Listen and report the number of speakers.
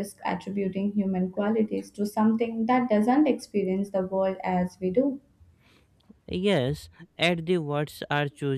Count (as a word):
two